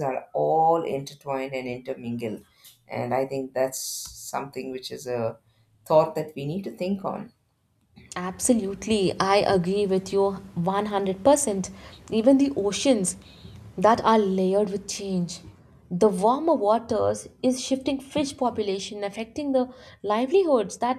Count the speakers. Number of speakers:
2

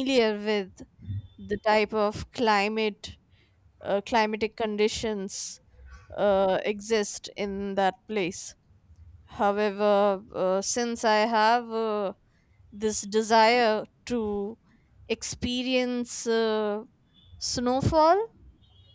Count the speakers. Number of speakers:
1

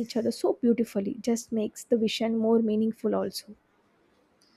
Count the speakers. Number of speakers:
1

